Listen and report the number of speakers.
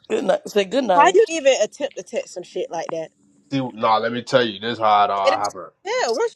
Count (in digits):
3